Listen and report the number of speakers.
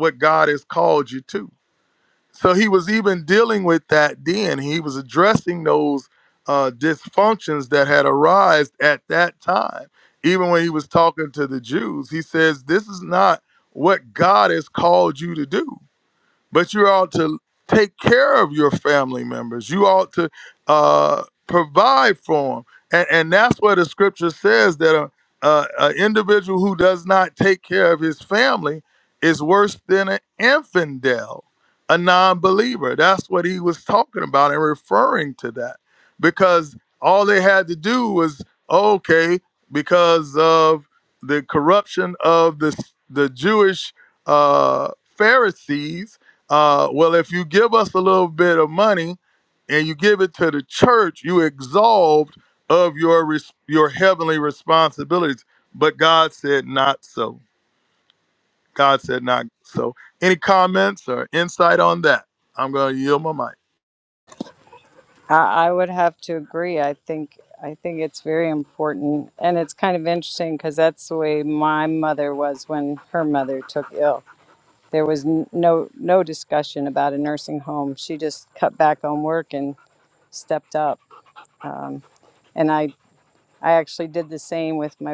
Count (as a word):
two